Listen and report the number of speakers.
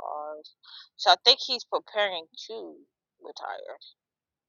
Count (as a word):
one